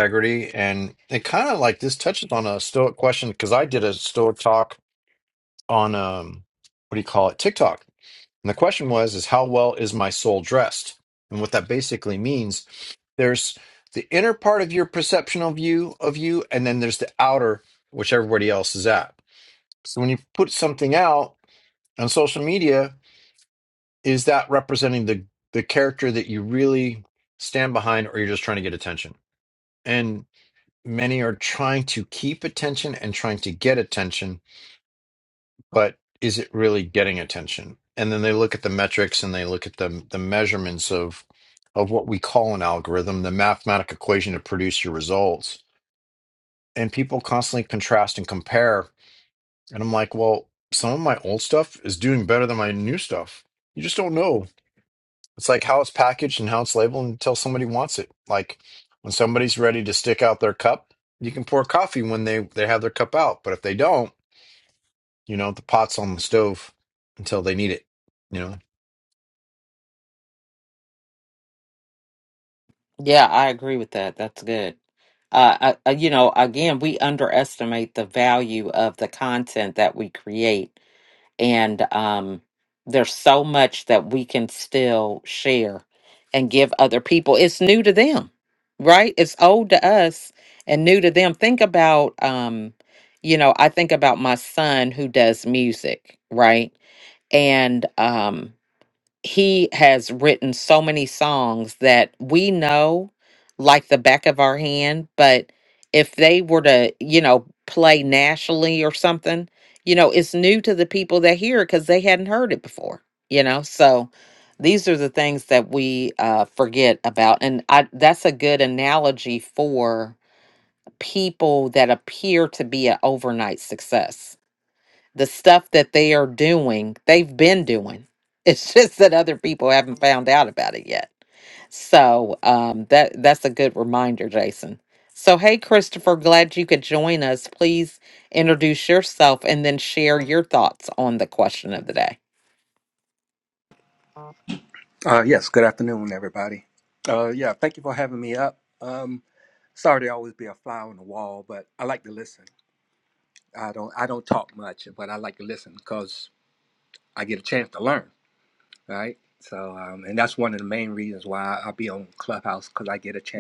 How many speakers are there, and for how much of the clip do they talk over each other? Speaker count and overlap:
3, no overlap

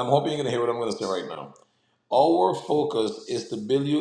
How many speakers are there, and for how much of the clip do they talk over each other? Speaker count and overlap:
1, no overlap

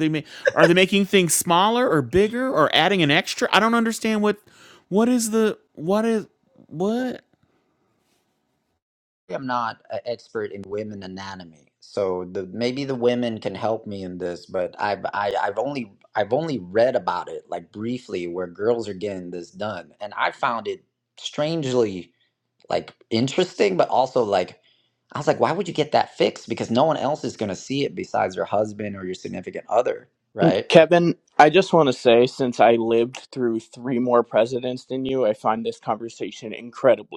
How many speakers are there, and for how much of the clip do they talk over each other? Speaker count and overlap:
3, no overlap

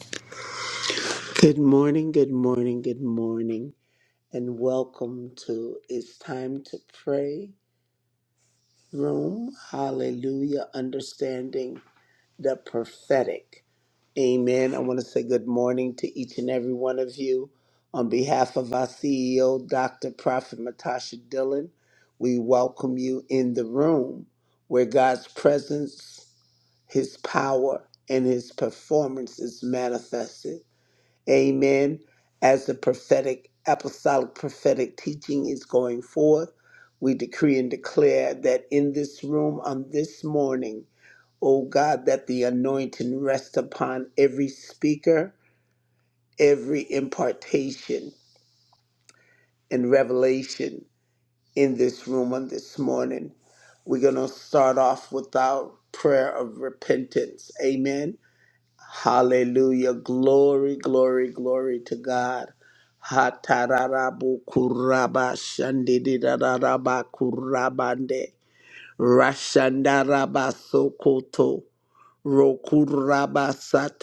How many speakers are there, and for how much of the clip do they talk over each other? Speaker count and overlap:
1, no overlap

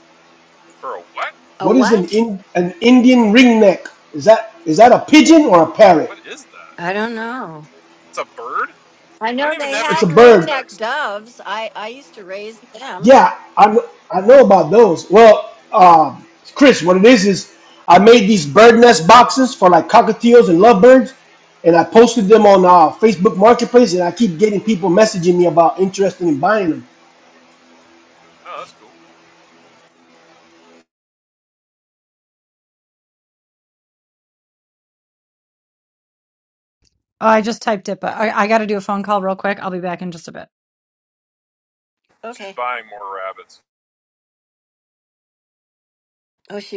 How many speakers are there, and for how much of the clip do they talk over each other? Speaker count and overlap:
4, about 5%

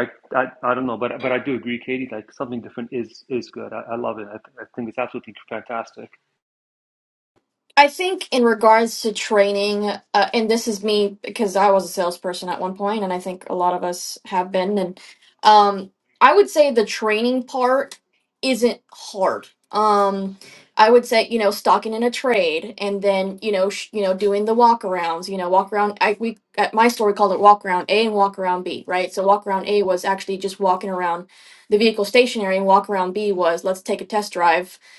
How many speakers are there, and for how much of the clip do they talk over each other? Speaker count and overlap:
2, no overlap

